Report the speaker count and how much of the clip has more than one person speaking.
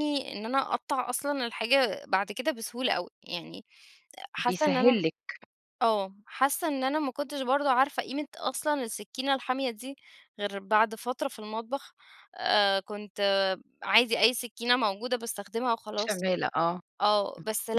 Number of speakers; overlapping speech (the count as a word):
two, about 3%